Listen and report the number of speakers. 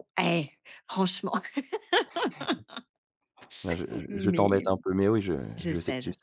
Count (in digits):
2